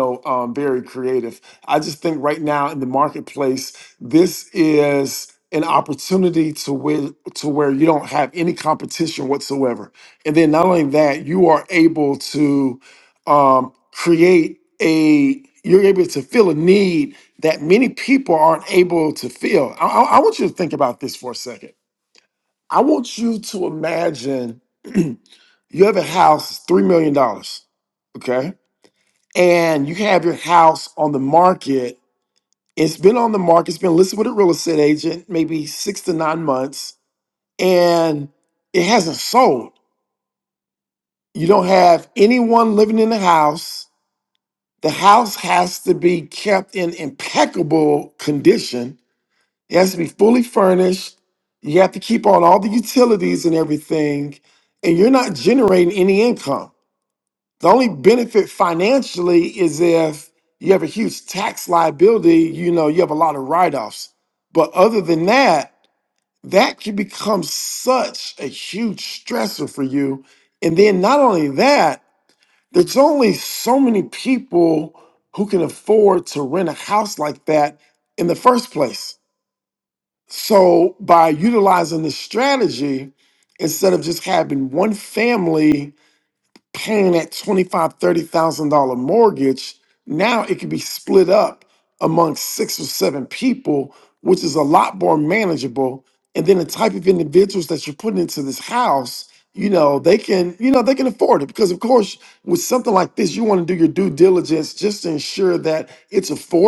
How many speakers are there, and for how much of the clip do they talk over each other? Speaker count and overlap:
one, no overlap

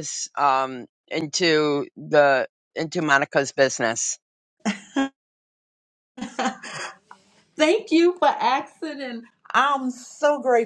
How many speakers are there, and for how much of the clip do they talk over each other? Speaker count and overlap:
two, no overlap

